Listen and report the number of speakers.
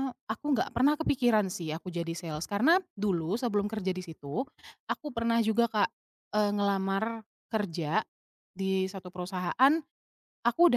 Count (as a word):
one